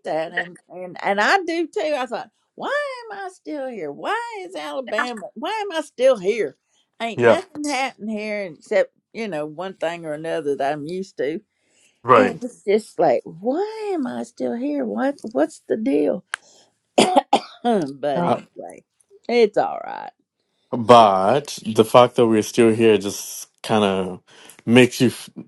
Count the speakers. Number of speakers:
two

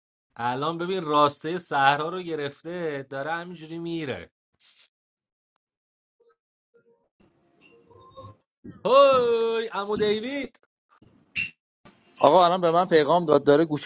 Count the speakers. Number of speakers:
two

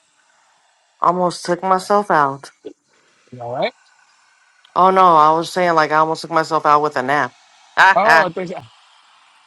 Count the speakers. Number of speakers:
two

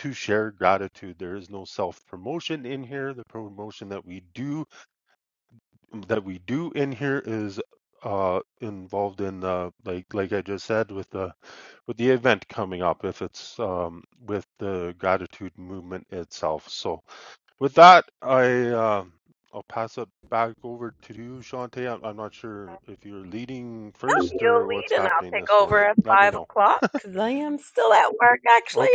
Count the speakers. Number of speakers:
two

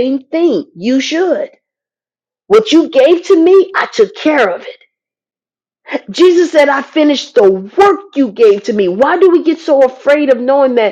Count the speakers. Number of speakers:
one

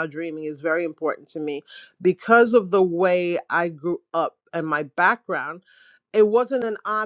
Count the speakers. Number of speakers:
one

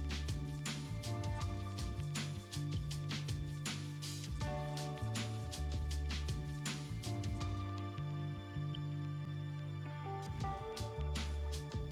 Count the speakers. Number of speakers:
zero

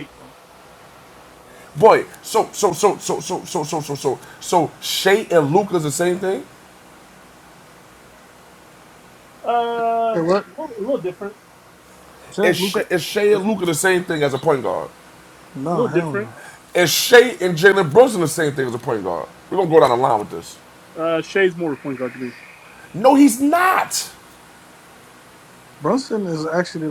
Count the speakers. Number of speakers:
three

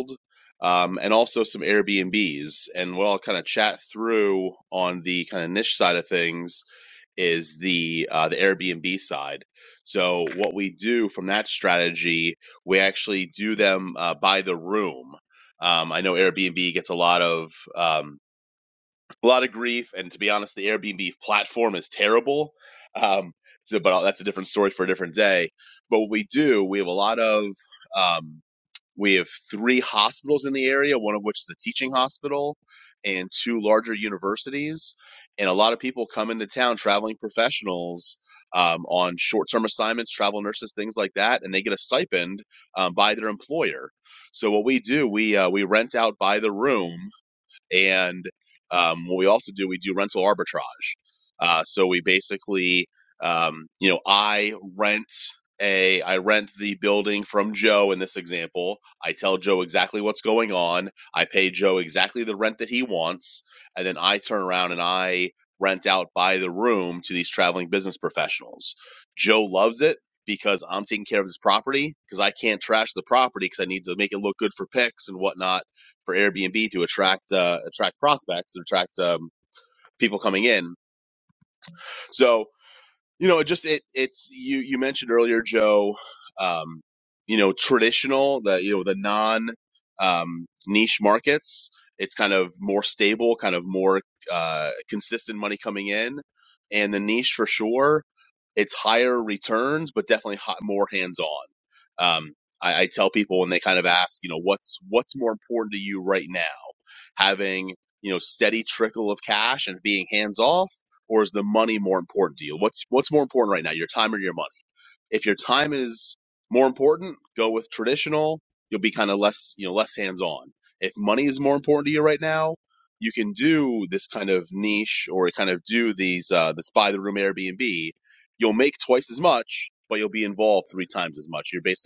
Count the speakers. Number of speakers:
one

